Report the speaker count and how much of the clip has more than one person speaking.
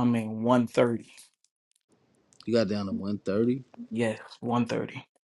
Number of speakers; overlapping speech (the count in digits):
2, no overlap